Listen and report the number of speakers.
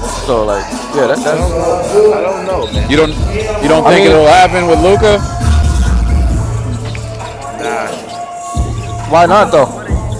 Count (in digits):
3